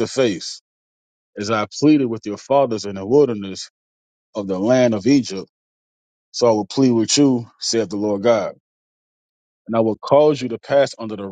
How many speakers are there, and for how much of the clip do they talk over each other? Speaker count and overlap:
one, no overlap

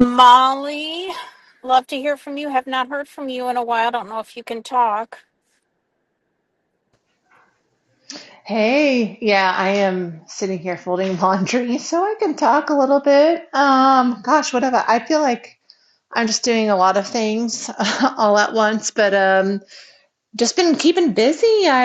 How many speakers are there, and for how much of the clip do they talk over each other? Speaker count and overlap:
two, no overlap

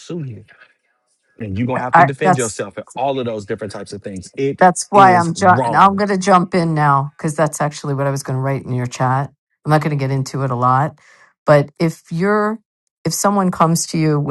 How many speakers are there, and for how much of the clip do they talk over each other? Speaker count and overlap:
two, about 11%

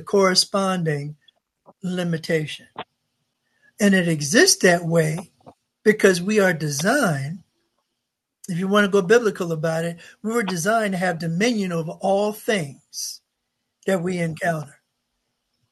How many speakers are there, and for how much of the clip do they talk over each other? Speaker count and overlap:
one, no overlap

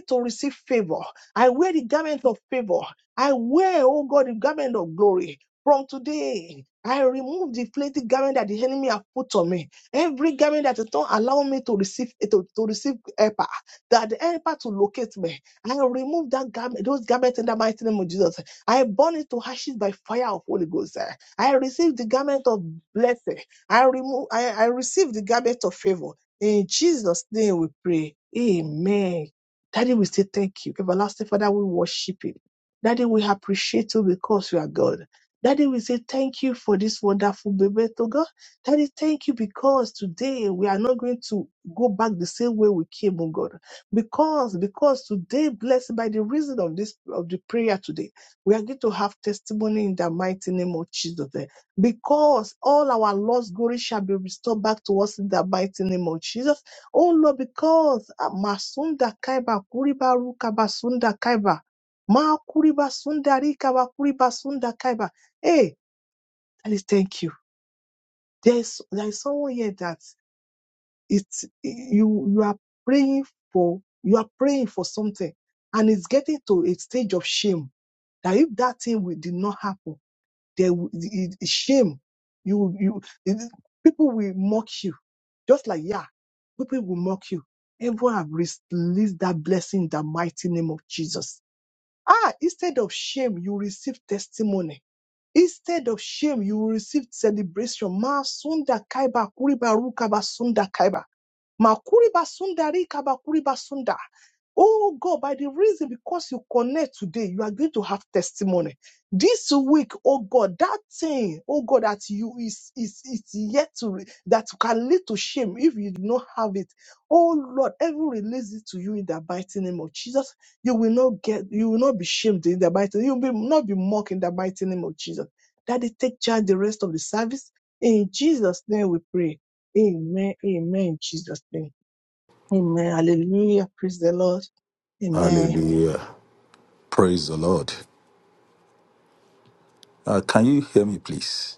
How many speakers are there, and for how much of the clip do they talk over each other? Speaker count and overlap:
two, under 1%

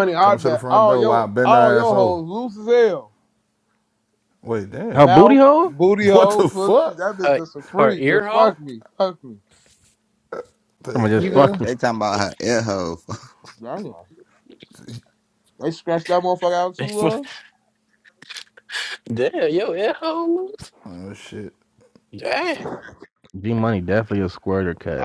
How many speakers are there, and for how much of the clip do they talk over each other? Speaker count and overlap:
five, about 21%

